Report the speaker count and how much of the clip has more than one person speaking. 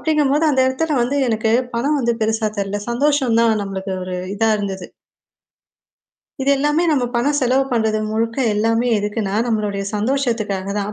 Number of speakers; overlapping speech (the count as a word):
one, no overlap